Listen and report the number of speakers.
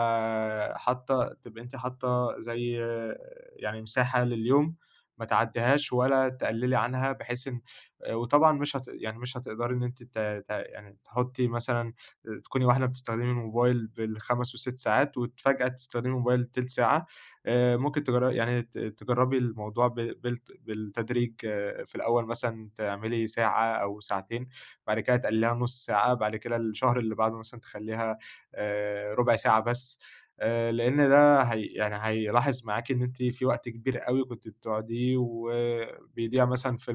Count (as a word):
one